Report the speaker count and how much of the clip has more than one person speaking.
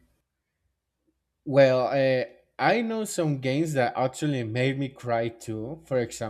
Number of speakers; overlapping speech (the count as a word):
one, no overlap